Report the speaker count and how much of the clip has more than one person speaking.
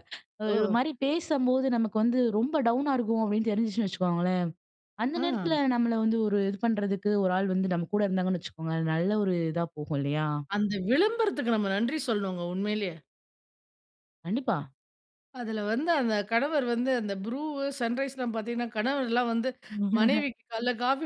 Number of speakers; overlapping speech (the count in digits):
2, about 3%